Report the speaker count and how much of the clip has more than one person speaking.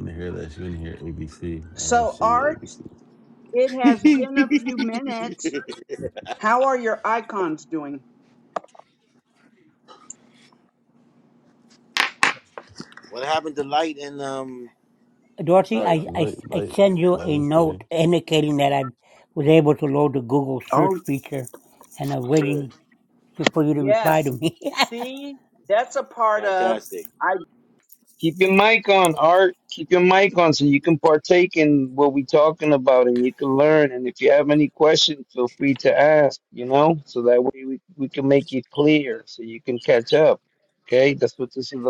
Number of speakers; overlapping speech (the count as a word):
five, about 11%